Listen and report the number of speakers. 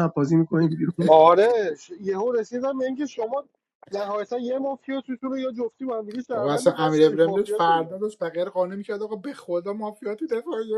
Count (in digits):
3